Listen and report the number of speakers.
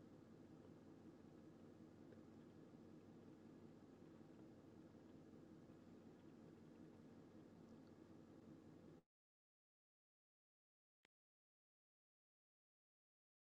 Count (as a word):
zero